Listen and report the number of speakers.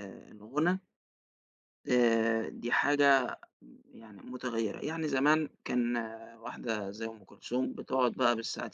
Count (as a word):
one